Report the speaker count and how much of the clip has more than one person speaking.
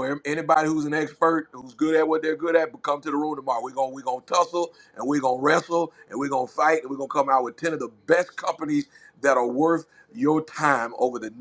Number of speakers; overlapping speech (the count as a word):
one, no overlap